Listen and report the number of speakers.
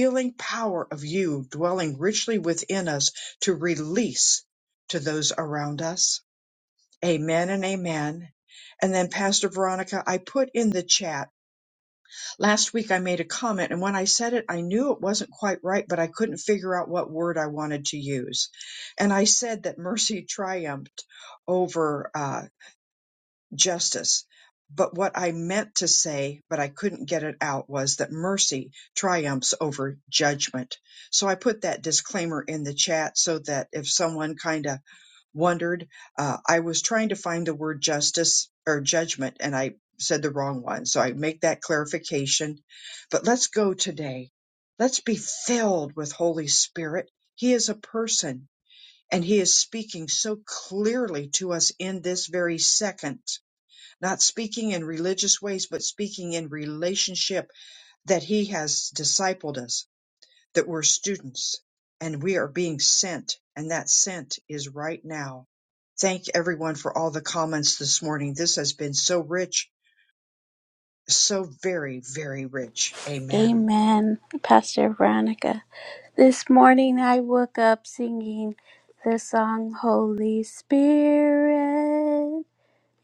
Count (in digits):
2